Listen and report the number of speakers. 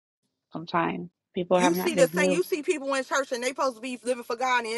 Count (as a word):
two